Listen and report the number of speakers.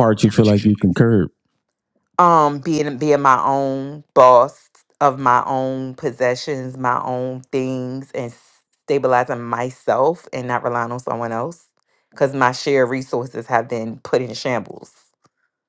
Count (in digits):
2